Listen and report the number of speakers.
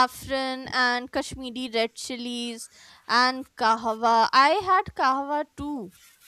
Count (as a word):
one